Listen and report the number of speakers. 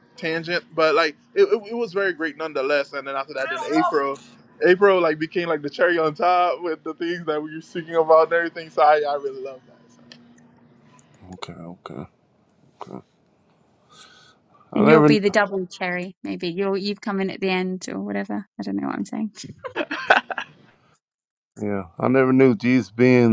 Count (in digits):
3